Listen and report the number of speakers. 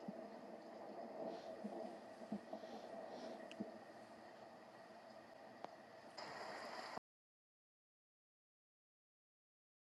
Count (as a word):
zero